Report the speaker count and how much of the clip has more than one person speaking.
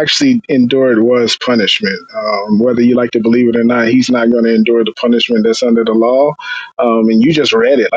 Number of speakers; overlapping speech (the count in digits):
1, no overlap